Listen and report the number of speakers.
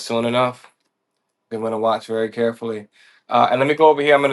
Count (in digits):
1